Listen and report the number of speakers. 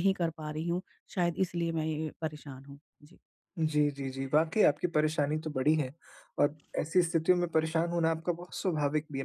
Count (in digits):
2